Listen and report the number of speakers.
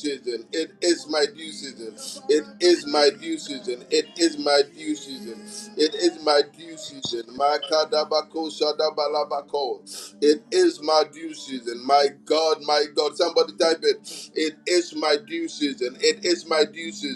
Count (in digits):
1